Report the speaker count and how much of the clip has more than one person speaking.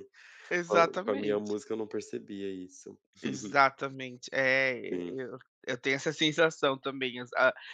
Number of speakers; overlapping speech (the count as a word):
two, about 12%